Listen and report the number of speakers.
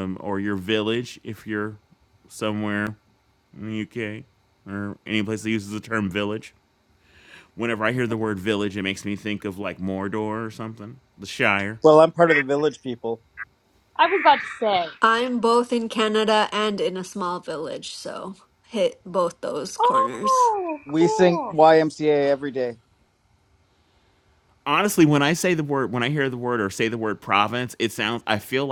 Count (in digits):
4